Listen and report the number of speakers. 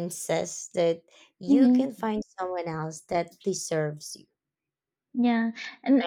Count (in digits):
2